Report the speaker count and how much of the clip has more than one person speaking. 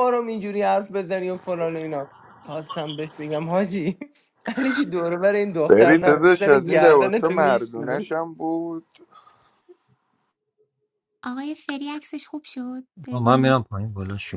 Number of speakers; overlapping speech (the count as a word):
four, about 19%